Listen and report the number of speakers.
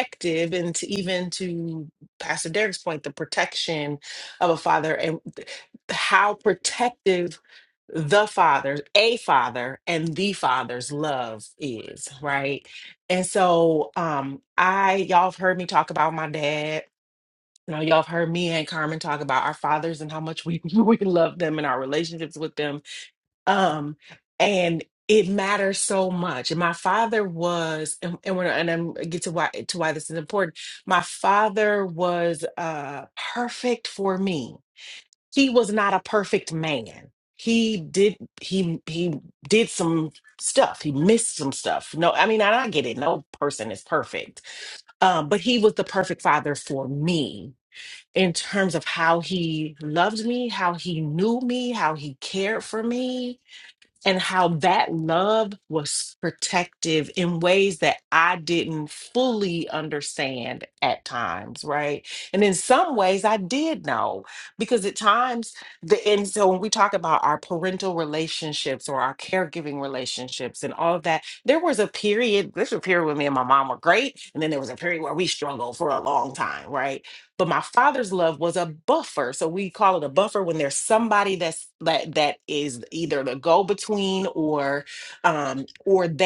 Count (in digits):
1